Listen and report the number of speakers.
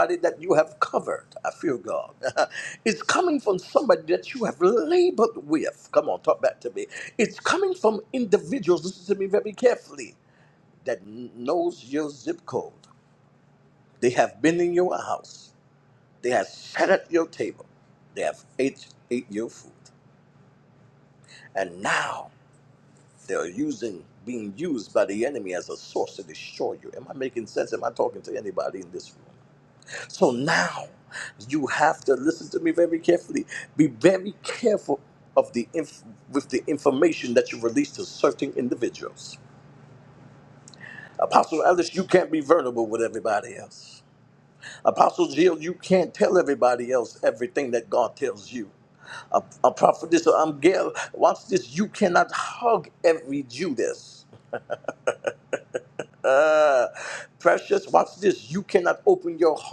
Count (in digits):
1